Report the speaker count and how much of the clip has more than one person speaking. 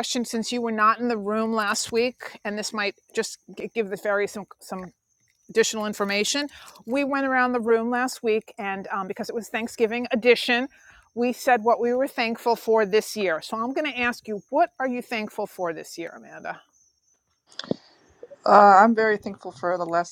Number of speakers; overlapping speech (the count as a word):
two, no overlap